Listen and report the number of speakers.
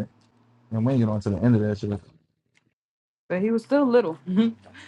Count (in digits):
2